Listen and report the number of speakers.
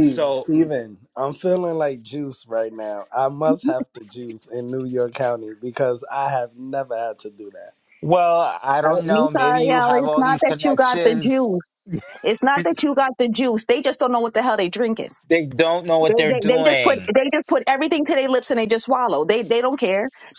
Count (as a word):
three